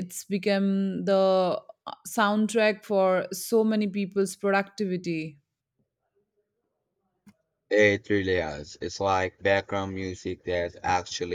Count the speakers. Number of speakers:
two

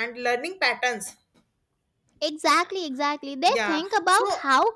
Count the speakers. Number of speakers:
two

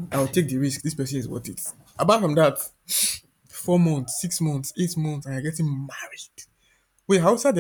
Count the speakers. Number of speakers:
one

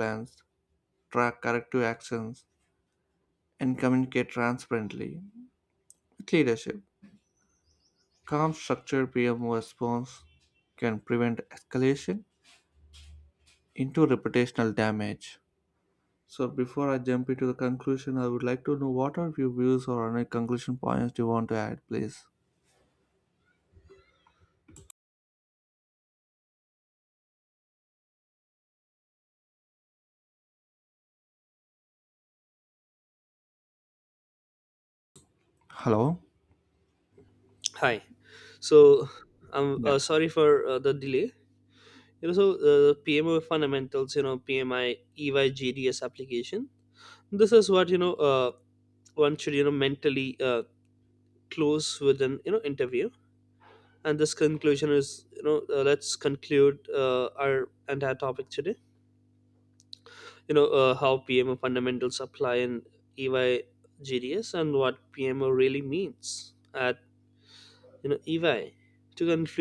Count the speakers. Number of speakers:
two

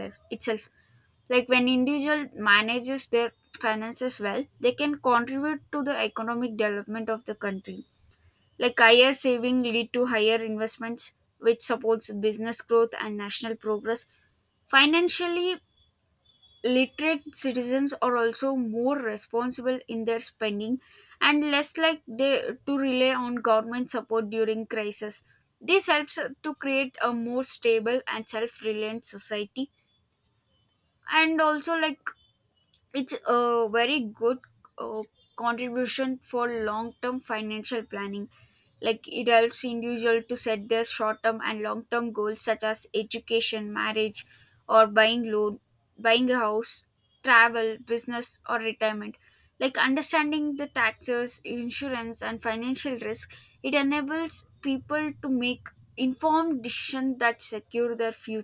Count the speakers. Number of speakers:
one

